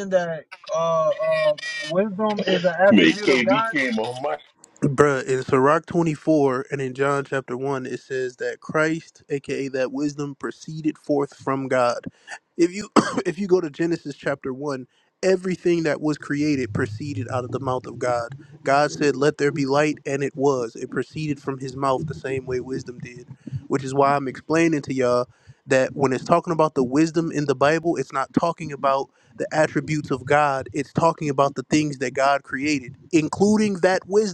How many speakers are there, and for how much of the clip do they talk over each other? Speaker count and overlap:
three, about 2%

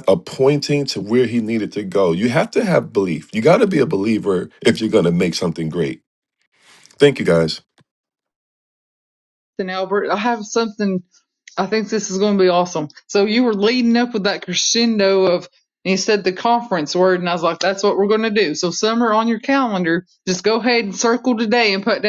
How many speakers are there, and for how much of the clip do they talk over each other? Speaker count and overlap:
two, no overlap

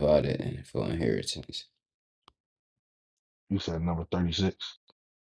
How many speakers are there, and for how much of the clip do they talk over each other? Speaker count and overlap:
two, no overlap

